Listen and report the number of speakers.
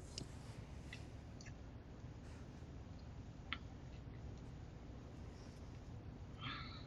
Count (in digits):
0